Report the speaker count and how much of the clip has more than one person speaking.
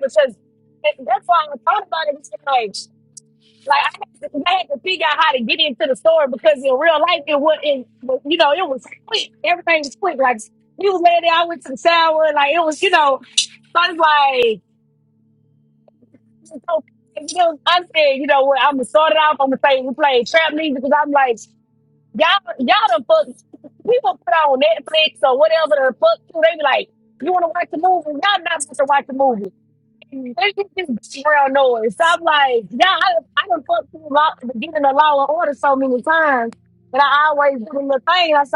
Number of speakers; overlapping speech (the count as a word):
one, no overlap